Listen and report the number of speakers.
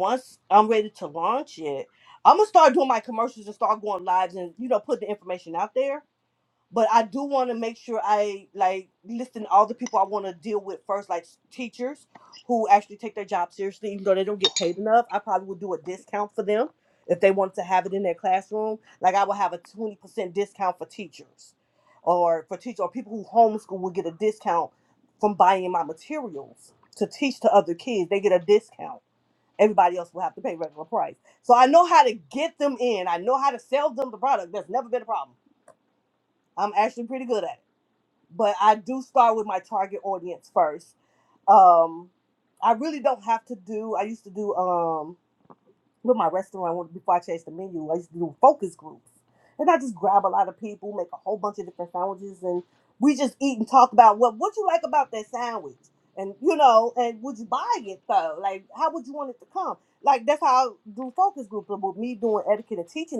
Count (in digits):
1